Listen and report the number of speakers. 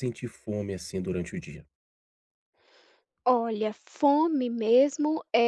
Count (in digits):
2